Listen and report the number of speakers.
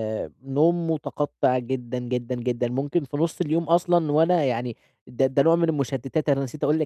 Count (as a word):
one